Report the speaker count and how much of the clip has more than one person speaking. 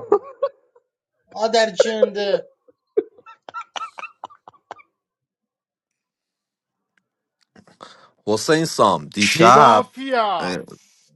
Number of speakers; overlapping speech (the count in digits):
3, about 7%